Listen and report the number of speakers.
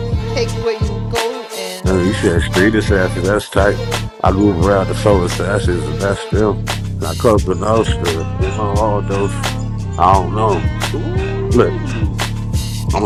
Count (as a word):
three